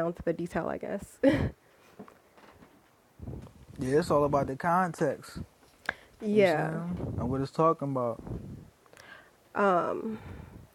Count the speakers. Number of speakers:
2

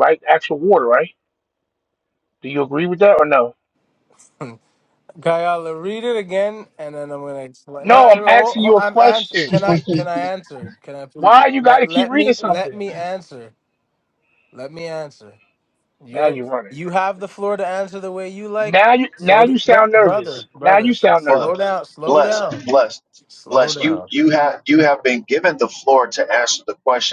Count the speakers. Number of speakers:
3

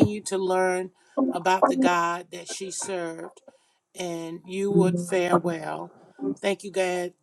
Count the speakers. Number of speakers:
1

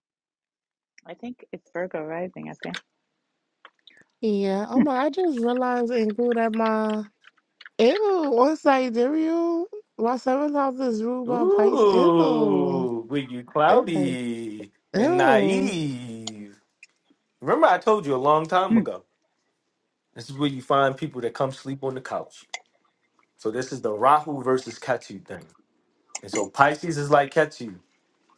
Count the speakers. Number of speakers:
3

